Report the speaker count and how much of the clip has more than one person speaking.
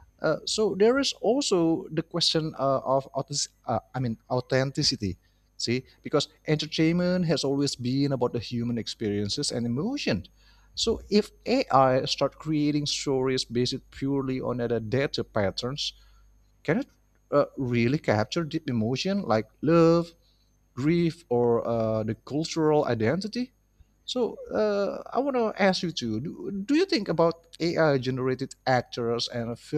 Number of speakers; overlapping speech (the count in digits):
1, no overlap